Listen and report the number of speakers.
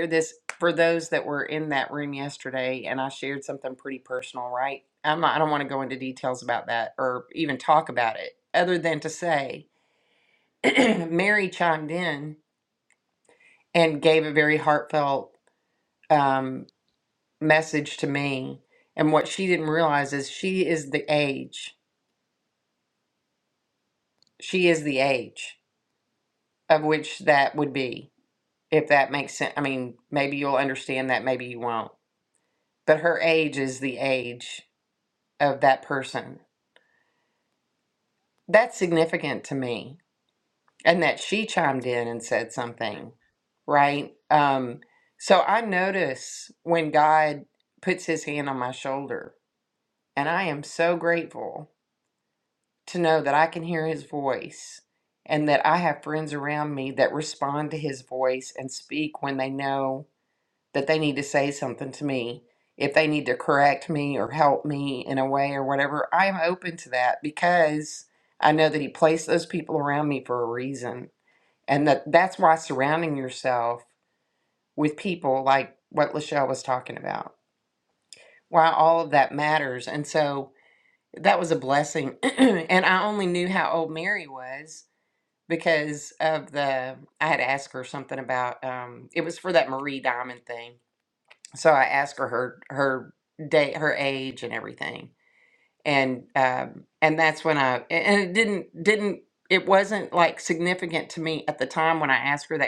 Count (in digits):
1